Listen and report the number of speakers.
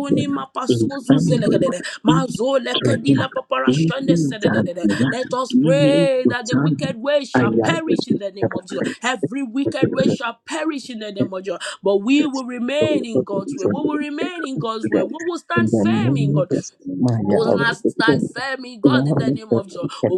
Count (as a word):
two